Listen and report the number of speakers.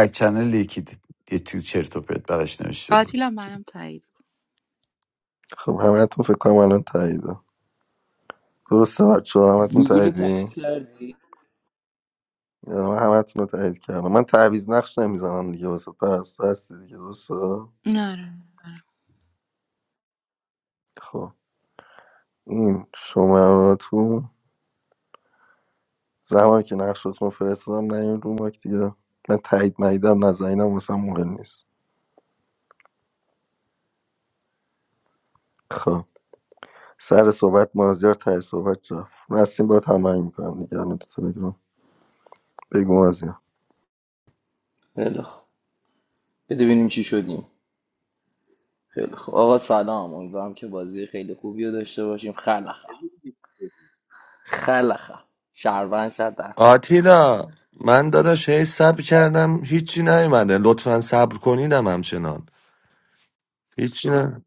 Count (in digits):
5